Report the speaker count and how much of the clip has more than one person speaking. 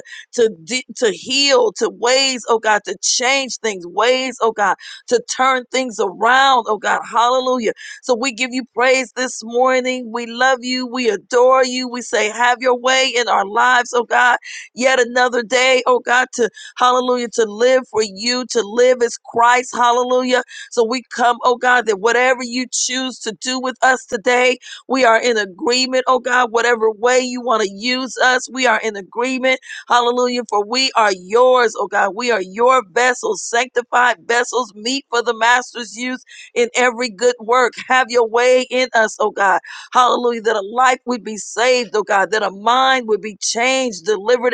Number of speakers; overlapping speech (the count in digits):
1, no overlap